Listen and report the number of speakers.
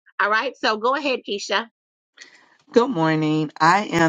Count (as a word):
two